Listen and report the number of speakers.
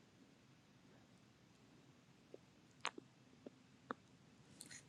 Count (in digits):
0